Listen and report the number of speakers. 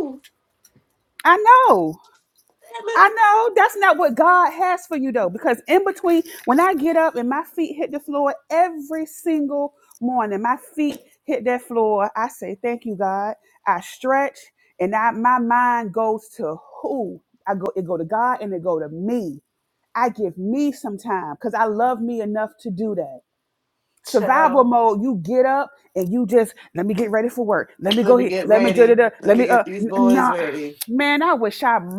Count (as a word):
two